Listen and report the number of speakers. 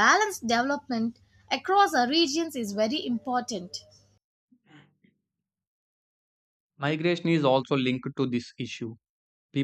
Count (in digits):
2